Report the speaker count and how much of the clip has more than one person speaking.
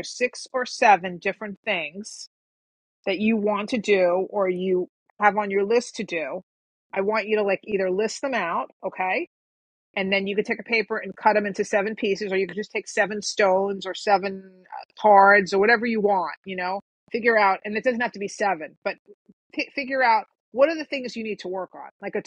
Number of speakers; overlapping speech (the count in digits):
1, no overlap